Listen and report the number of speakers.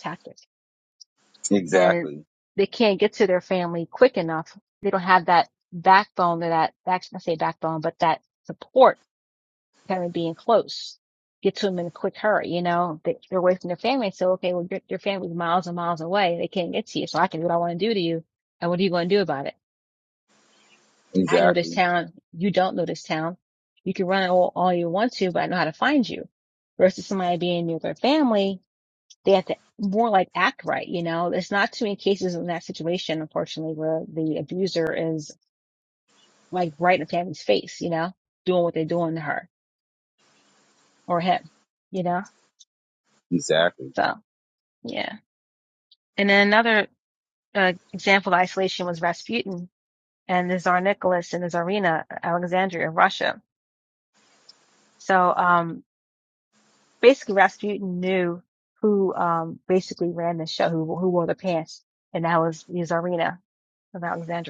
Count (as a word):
two